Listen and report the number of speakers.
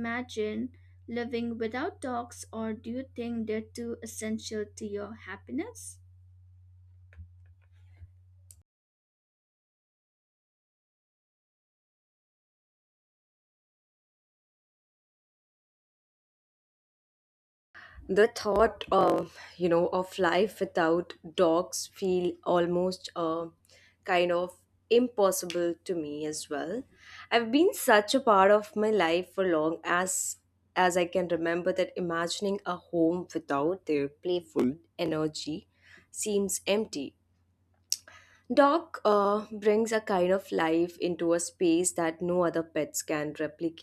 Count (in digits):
2